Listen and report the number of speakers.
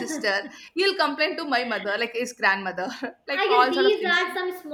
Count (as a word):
two